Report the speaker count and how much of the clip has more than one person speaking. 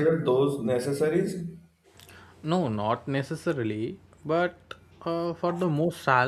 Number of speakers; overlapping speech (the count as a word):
two, no overlap